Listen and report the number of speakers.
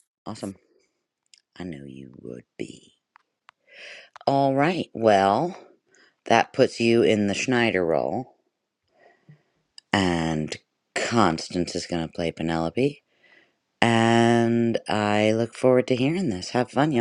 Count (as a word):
one